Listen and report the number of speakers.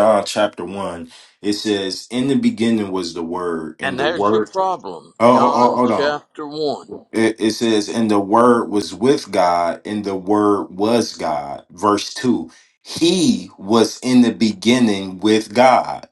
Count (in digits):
2